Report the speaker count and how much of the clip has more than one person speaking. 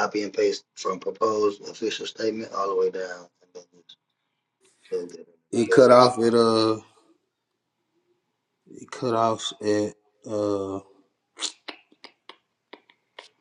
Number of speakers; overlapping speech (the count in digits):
2, about 2%